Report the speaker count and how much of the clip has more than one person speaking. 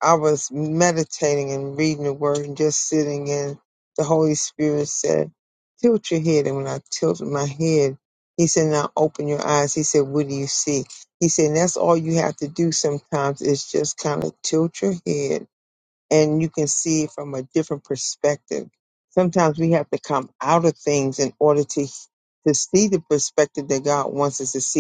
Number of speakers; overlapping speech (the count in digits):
1, no overlap